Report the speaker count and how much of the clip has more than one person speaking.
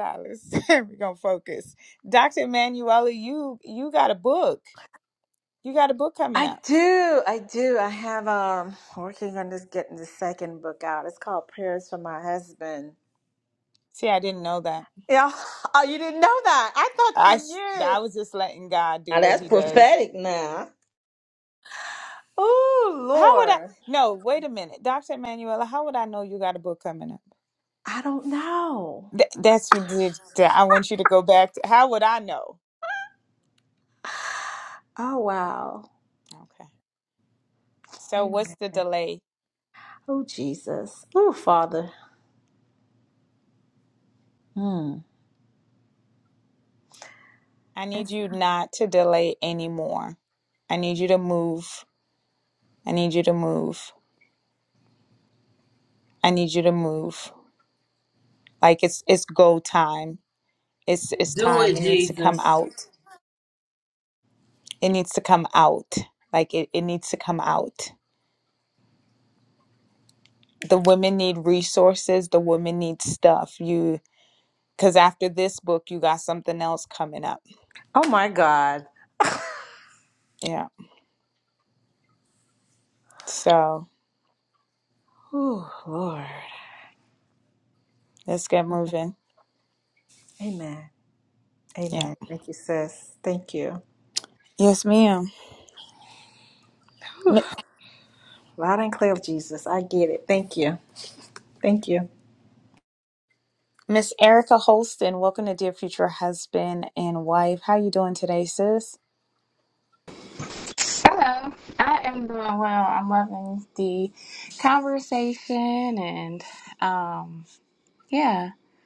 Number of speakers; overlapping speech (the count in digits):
4, about 3%